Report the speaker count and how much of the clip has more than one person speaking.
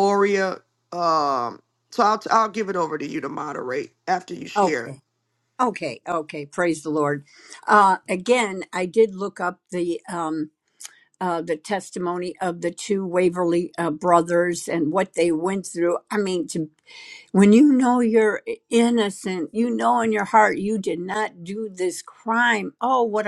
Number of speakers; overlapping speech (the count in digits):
2, about 1%